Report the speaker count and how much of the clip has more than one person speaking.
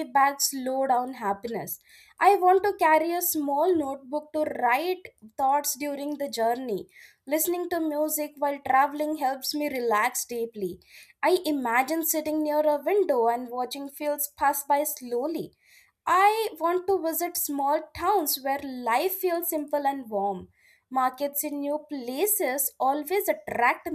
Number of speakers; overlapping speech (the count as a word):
one, no overlap